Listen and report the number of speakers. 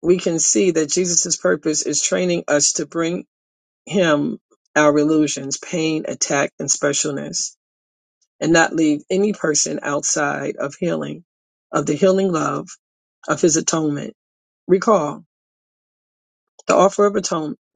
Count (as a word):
one